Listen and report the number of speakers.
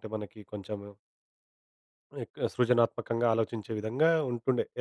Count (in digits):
1